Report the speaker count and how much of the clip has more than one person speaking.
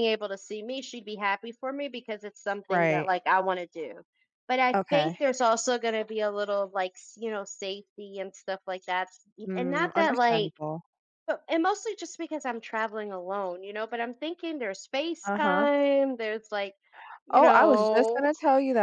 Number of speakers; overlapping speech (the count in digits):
2, about 18%